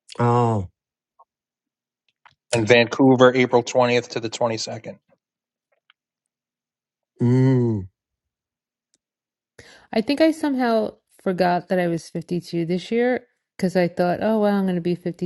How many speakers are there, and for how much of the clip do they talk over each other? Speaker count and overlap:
three, no overlap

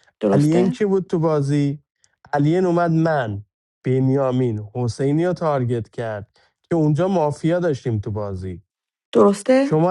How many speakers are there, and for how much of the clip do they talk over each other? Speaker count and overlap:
two, about 5%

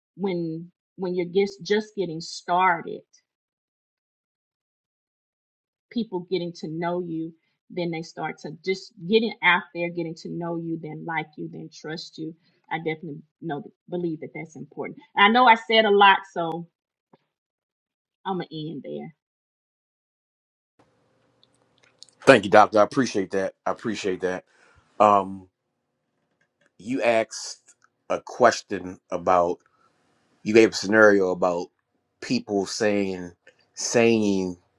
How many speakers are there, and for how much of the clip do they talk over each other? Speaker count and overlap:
two, no overlap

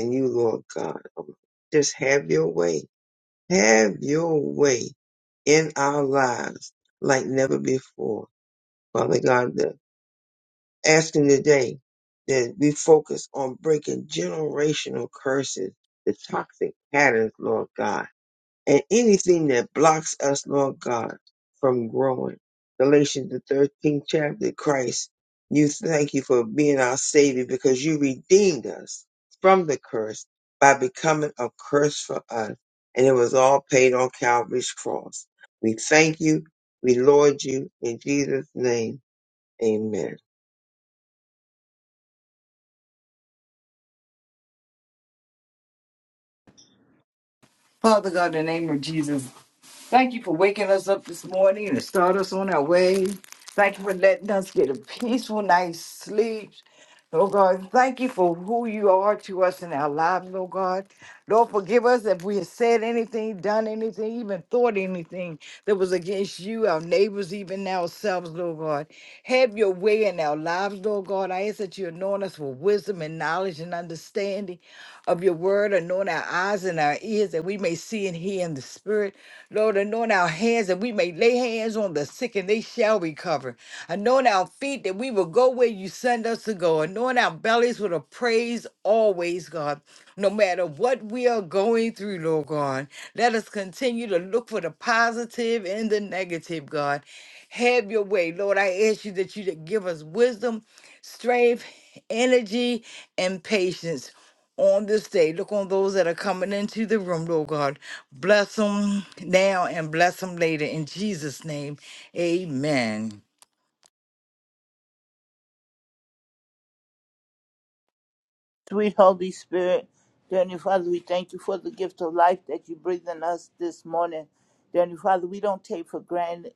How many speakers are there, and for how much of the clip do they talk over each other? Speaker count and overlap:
three, no overlap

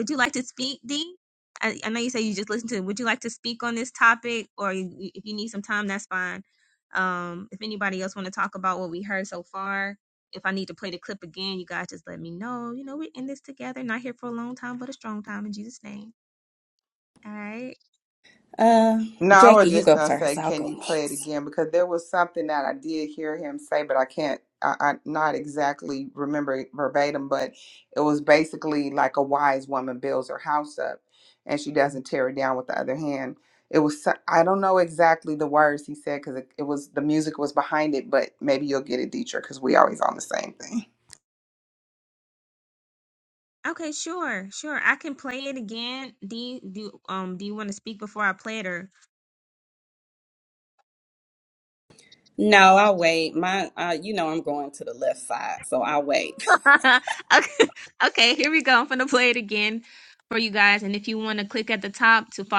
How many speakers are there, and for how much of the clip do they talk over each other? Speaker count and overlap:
three, about 3%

